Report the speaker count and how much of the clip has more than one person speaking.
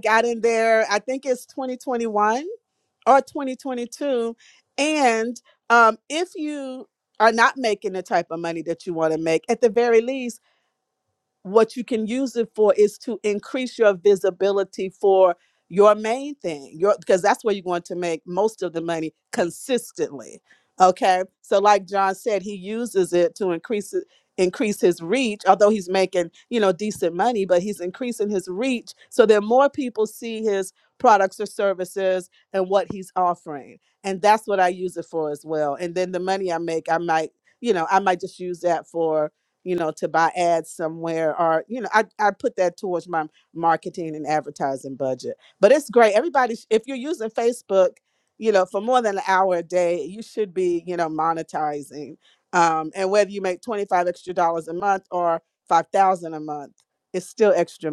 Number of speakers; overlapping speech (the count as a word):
one, no overlap